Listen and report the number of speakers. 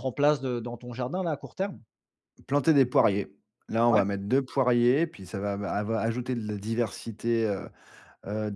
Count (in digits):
2